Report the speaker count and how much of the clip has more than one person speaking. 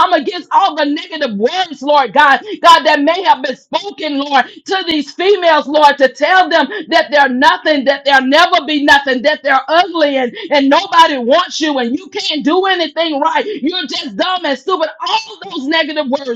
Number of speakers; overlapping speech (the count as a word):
one, no overlap